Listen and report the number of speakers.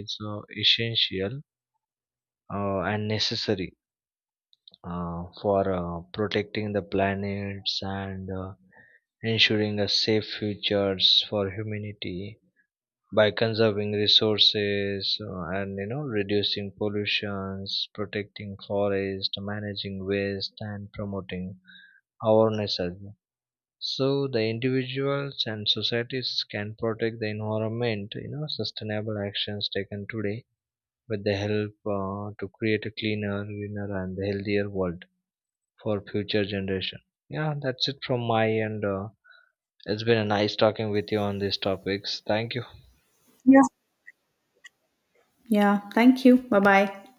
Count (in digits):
2